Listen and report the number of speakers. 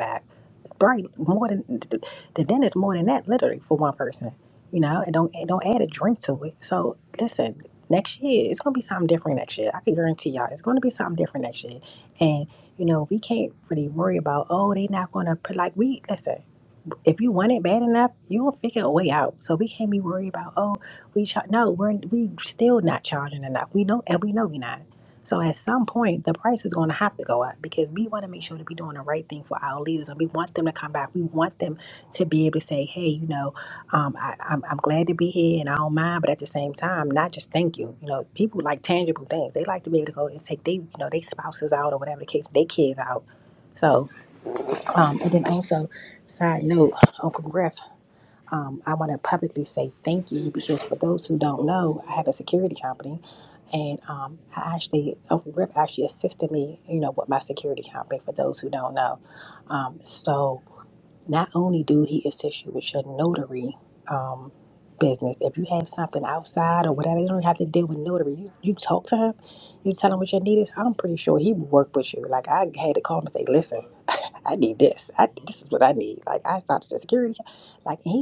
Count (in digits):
1